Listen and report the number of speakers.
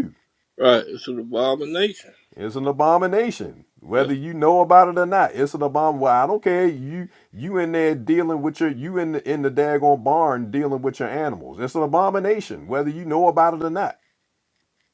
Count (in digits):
2